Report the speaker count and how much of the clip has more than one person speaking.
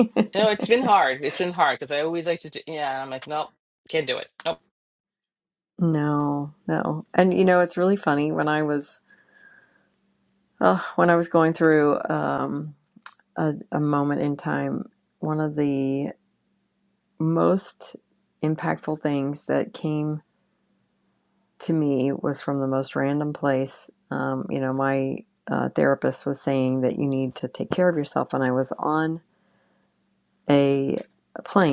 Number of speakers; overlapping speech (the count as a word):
two, no overlap